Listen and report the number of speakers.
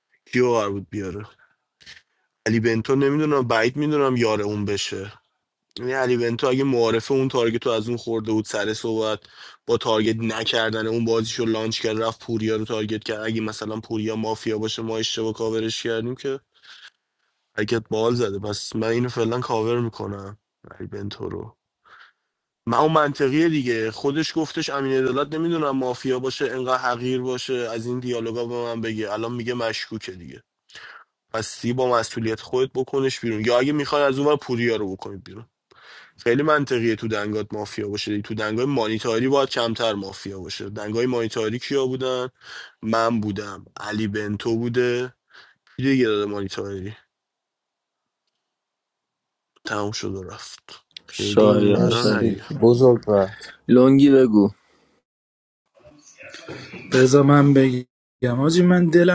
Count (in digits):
4